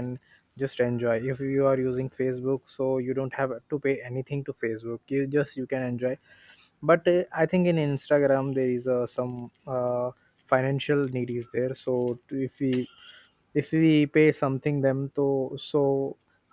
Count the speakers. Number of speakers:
one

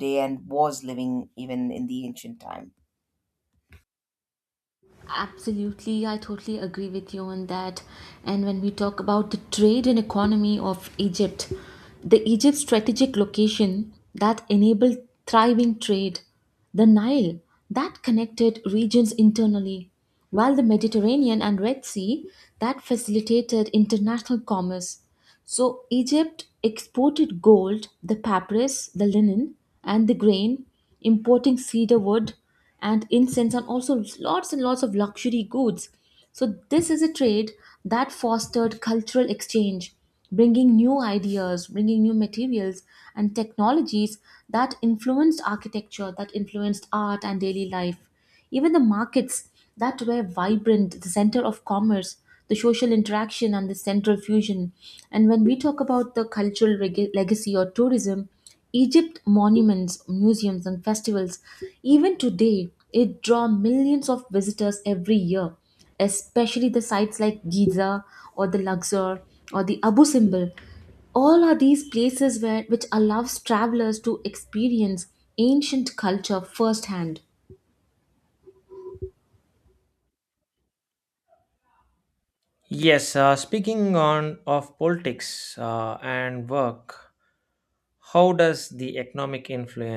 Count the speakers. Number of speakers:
three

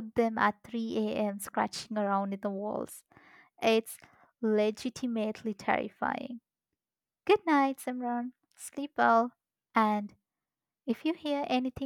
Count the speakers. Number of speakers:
one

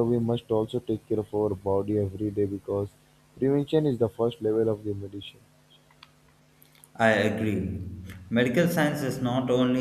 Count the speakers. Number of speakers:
two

